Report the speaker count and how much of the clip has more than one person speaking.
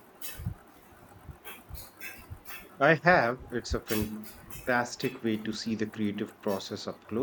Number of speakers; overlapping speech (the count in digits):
1, no overlap